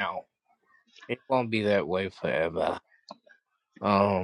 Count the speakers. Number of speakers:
1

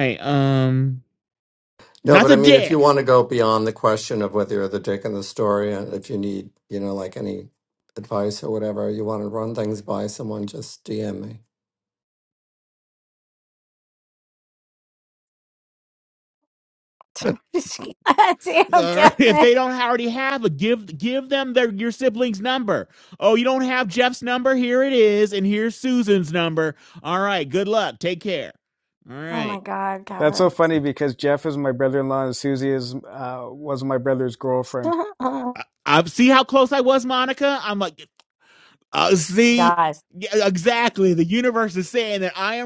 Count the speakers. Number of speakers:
4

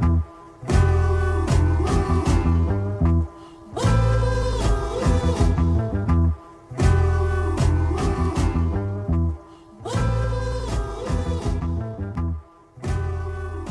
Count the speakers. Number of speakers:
0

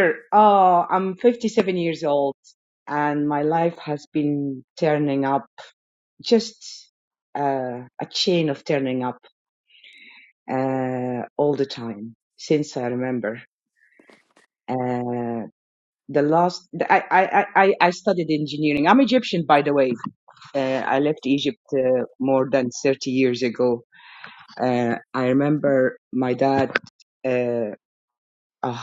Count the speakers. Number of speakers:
1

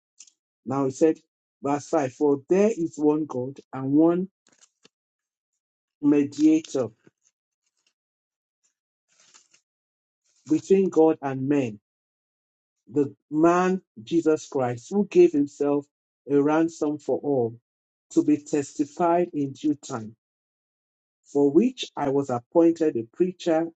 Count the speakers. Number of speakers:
1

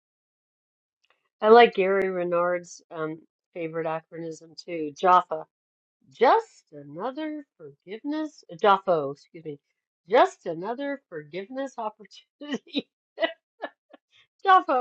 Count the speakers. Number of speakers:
1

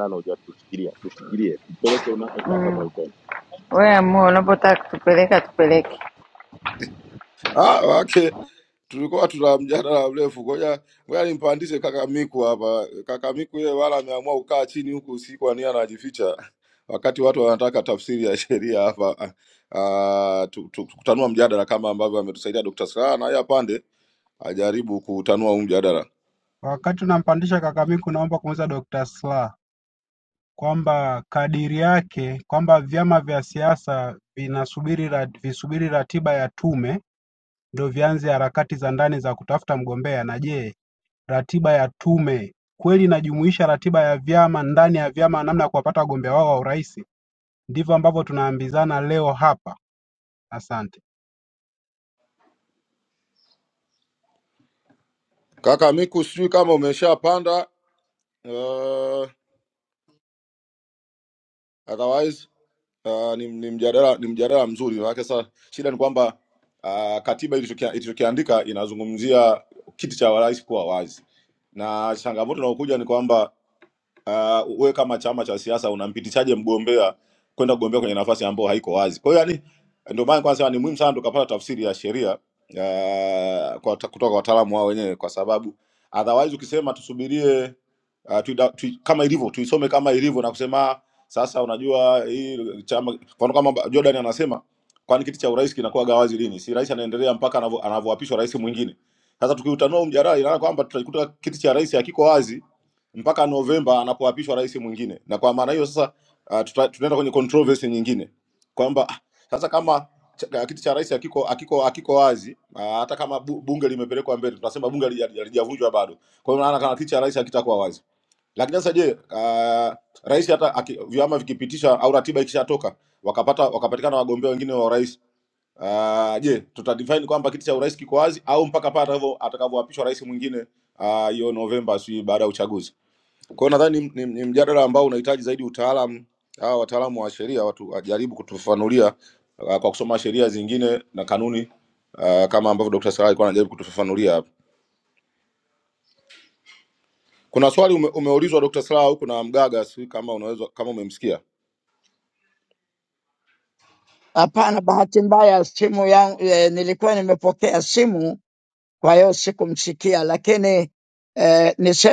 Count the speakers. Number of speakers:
5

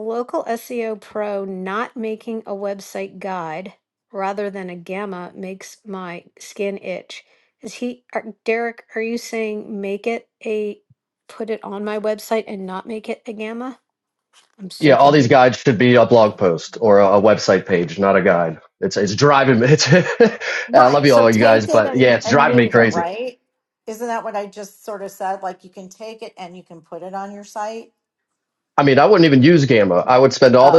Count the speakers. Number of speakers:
3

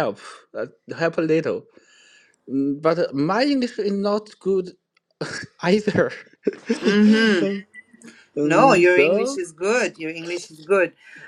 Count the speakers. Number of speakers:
2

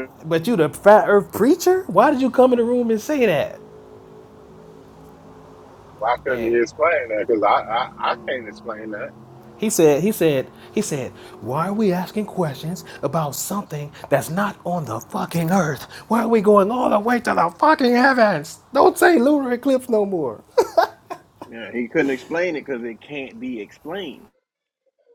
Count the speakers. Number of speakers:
3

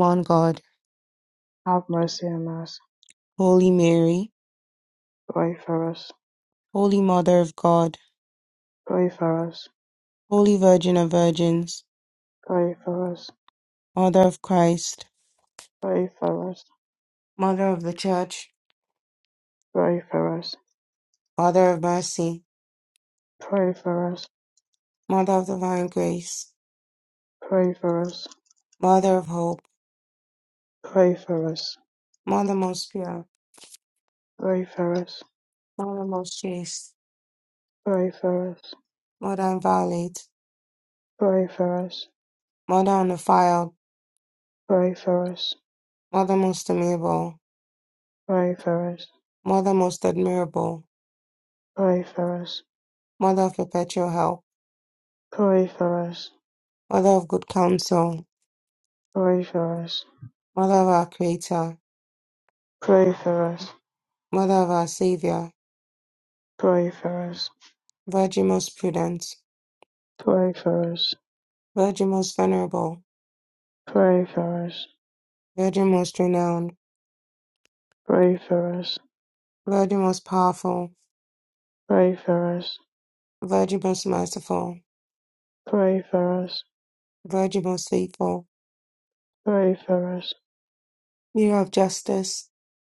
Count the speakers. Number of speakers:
2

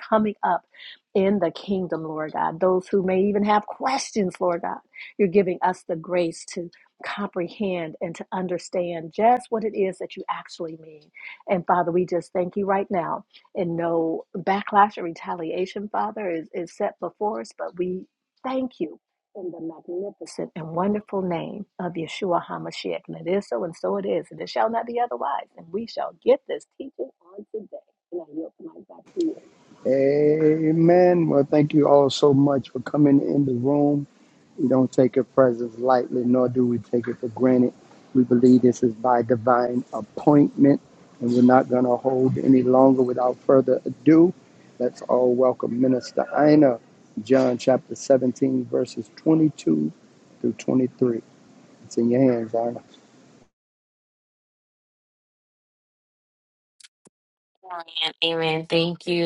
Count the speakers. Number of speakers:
3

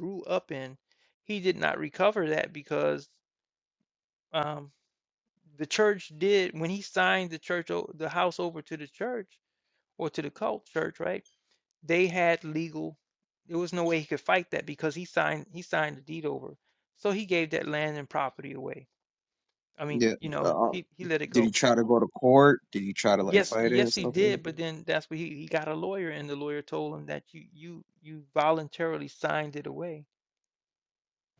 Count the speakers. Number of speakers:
2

